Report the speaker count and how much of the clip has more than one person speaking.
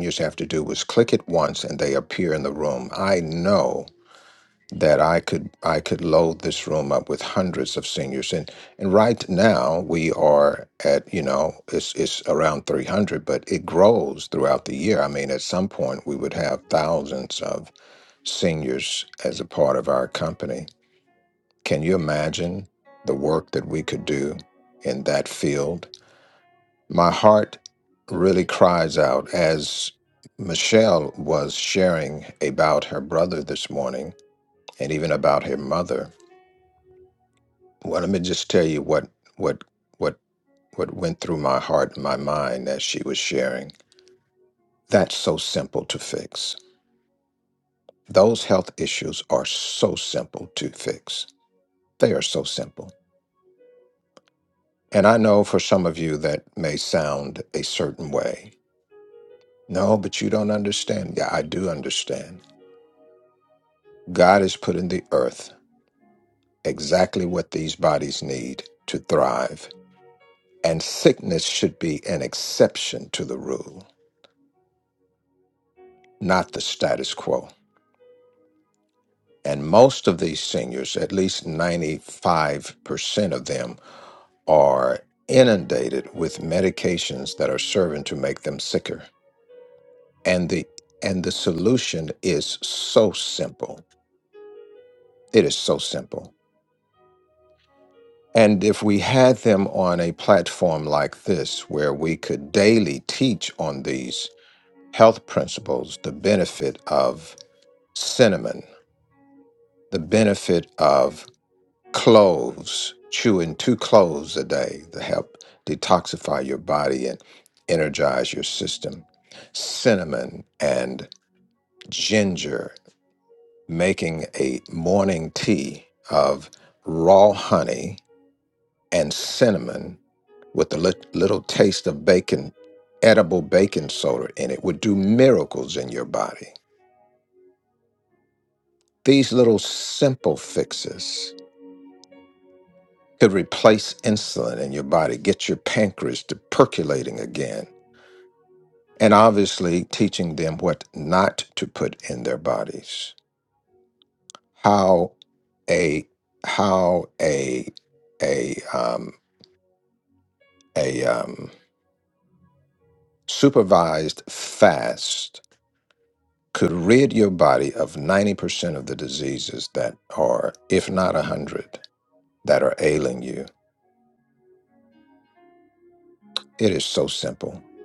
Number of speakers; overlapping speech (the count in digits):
1, no overlap